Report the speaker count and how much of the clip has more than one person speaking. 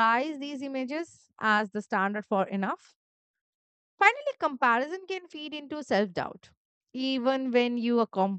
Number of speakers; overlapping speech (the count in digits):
1, no overlap